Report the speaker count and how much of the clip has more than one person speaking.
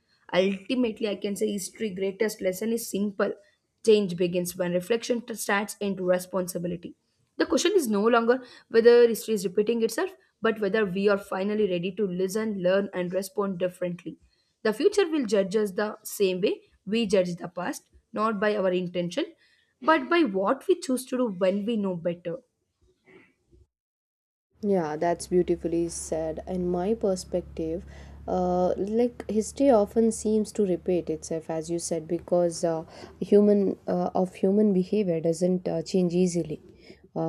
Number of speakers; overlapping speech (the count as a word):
two, no overlap